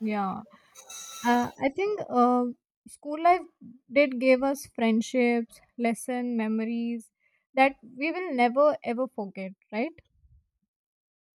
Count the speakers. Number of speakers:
1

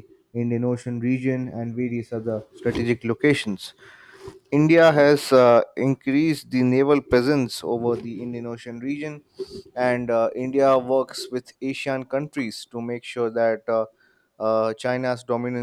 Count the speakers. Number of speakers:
1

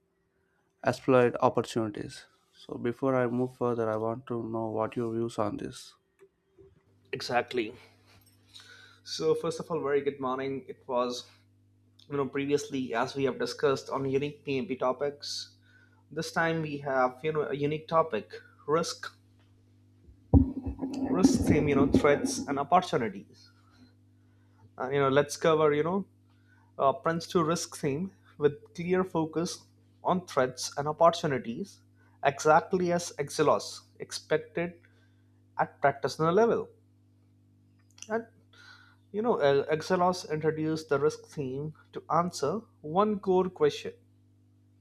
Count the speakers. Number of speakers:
2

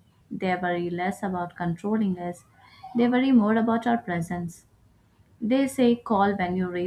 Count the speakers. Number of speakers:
1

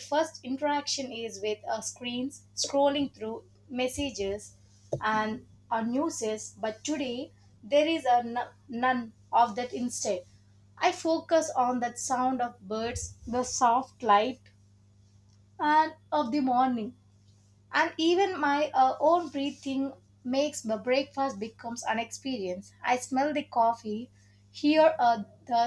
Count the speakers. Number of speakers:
1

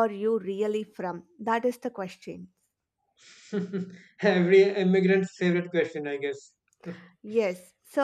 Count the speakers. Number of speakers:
2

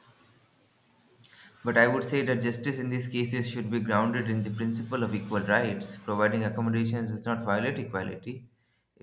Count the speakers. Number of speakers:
1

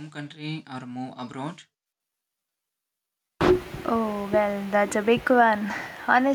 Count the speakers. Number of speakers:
2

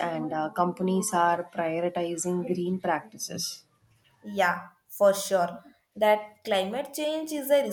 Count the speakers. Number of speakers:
2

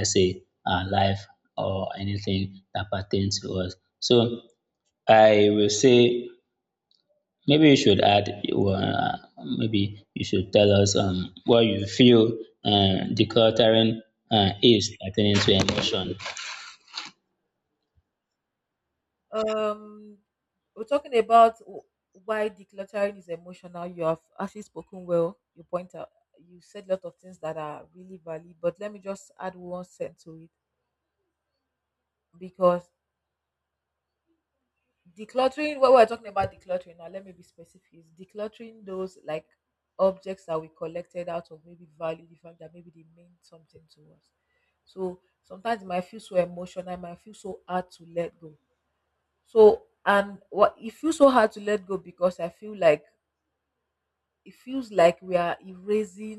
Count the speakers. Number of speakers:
2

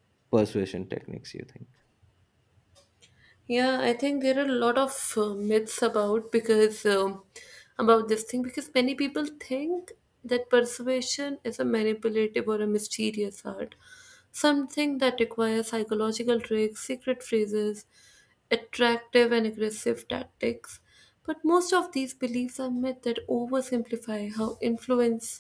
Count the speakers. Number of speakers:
2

